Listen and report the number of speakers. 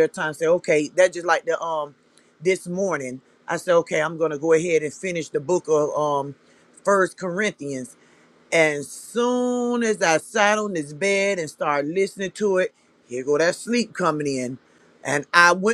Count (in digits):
1